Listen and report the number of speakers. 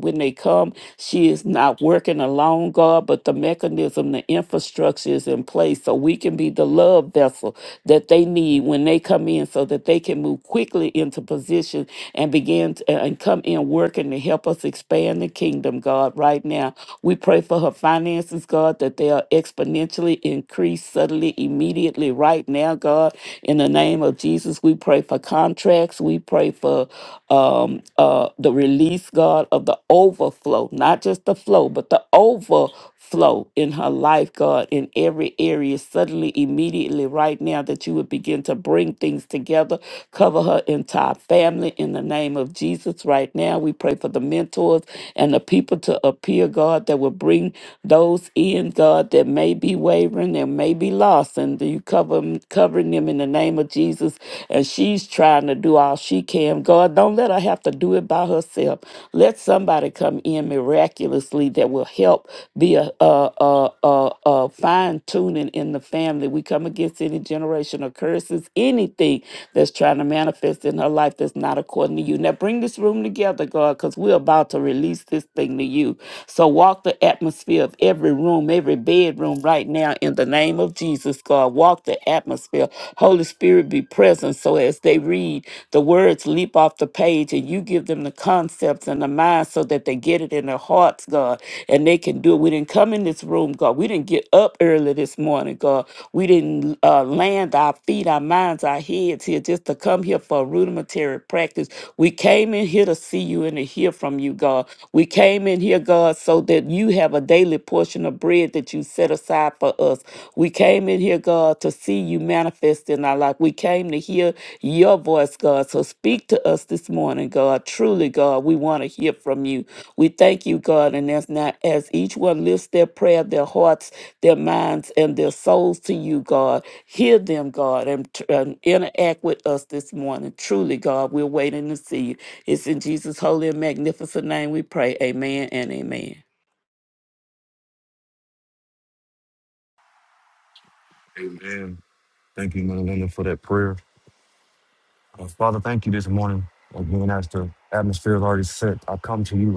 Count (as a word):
two